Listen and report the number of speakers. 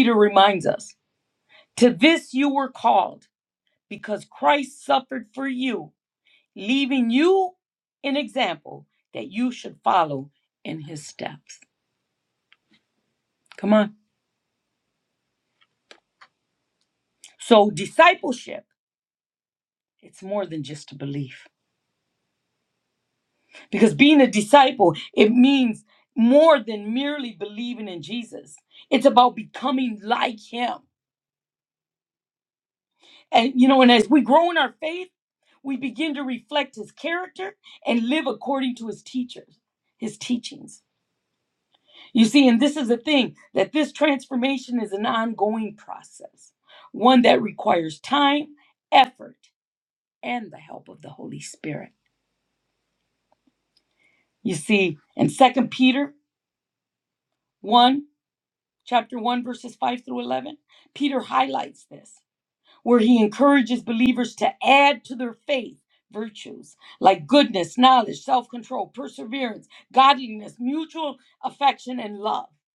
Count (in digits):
1